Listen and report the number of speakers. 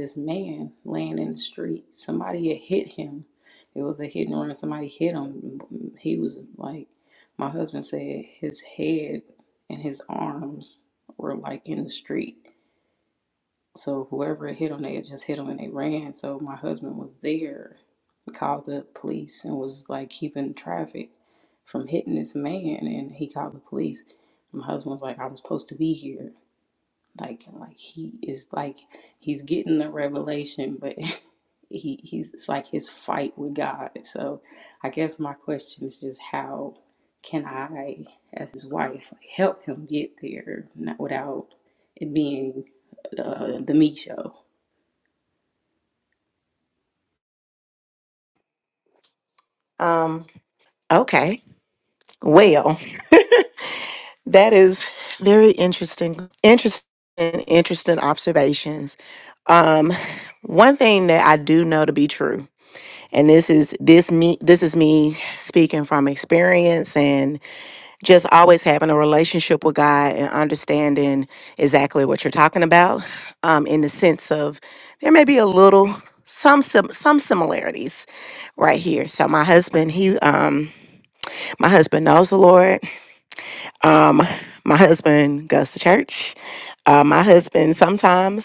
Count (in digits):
2